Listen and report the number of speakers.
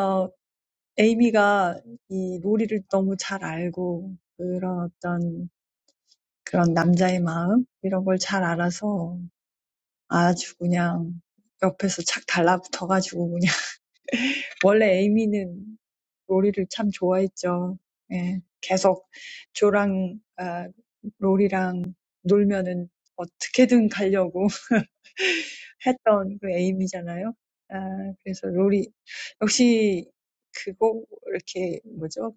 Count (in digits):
1